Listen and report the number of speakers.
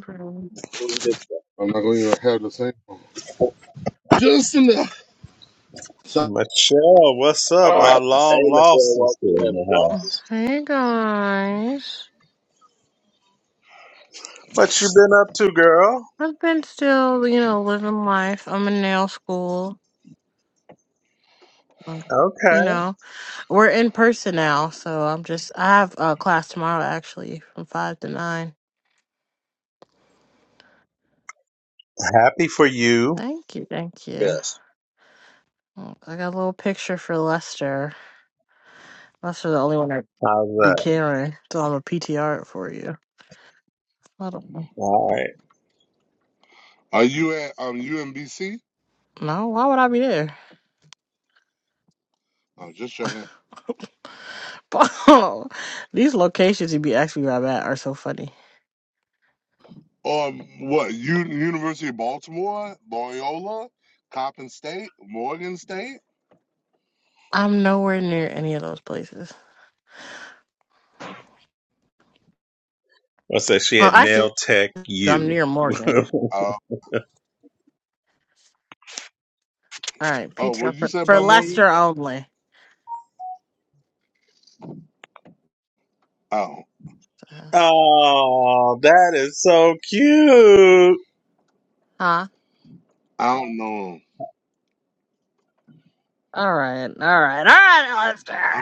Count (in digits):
4